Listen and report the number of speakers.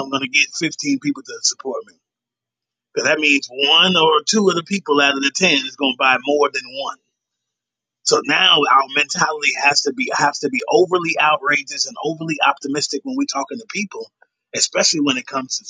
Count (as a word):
one